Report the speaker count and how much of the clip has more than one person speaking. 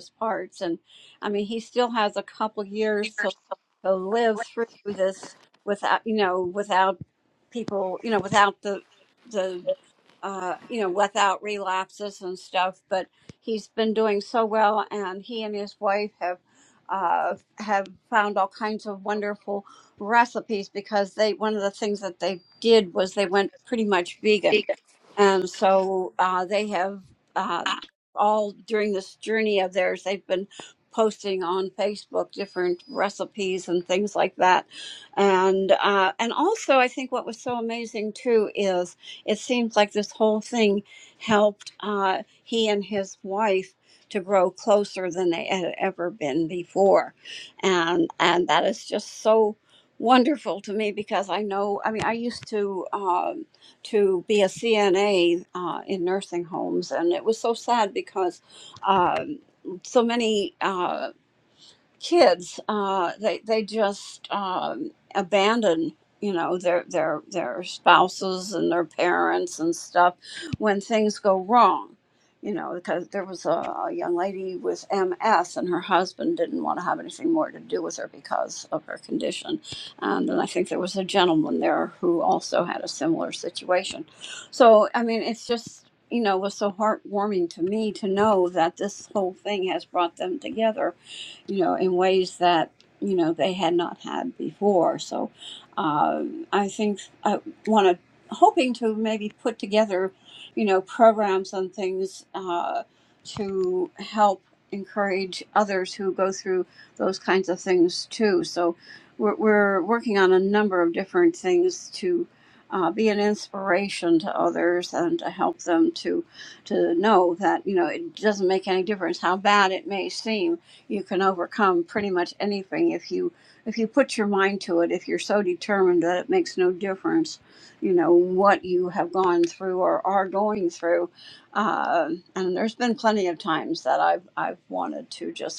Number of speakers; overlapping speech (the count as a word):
one, no overlap